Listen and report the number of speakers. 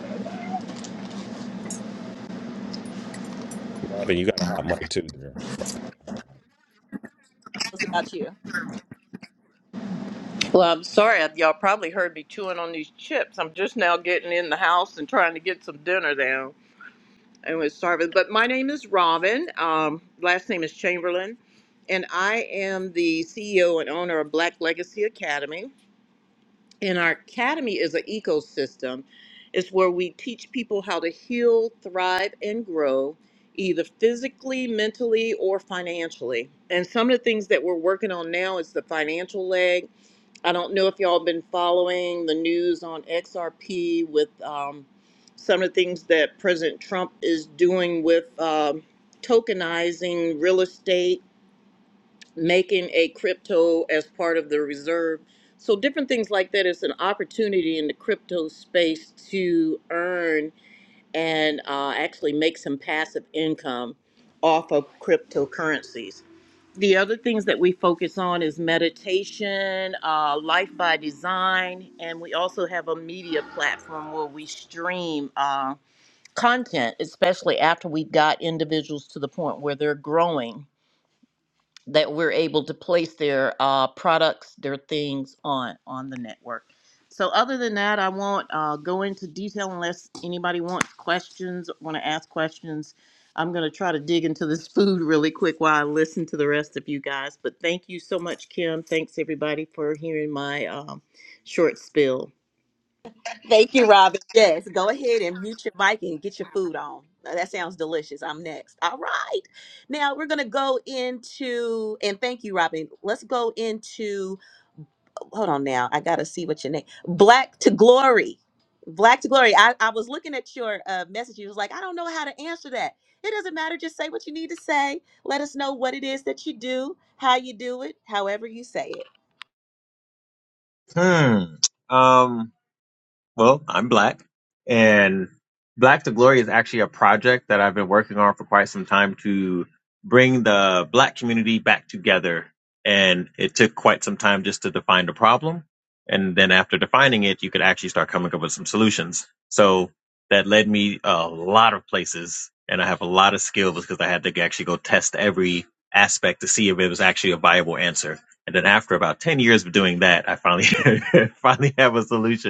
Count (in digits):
4